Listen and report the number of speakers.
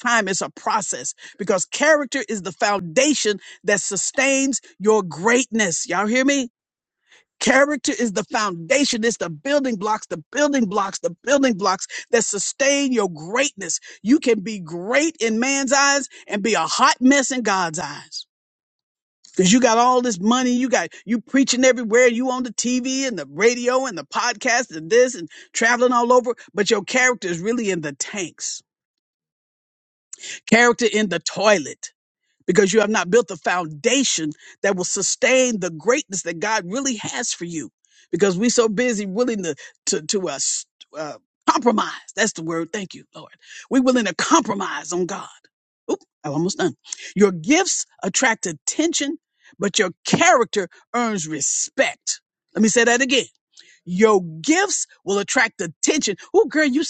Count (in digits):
1